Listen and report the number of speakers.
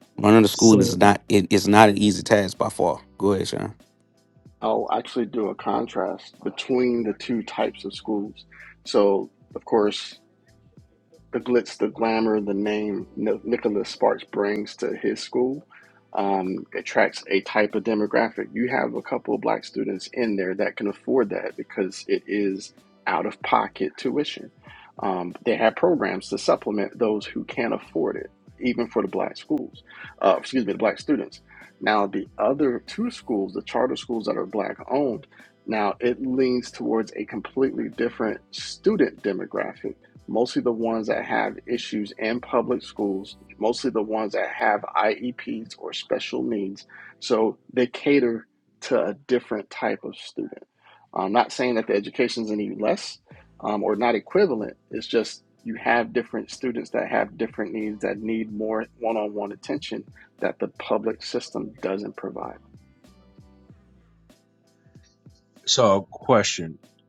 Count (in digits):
3